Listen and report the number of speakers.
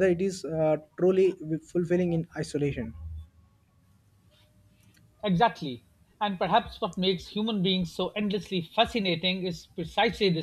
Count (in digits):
2